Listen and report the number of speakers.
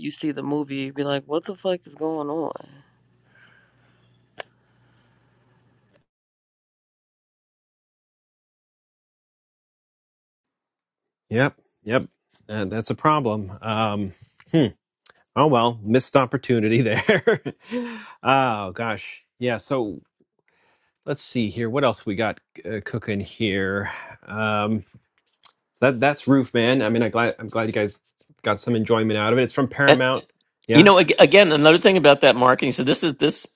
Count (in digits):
3